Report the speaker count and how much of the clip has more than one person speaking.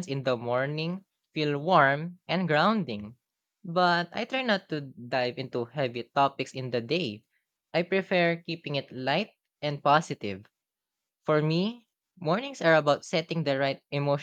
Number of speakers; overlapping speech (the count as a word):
one, no overlap